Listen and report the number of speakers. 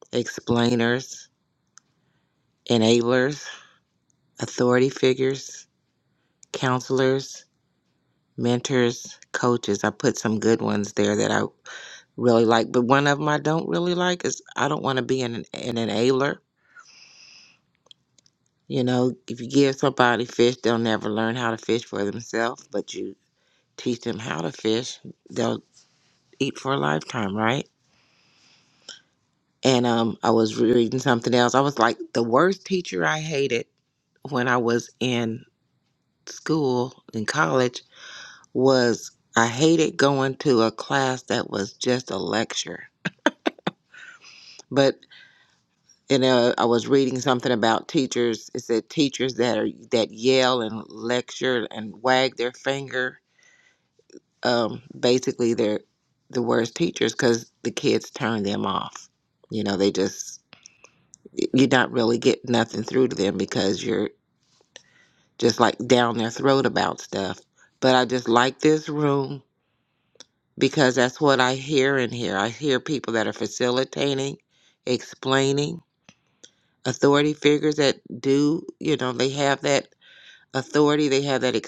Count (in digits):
1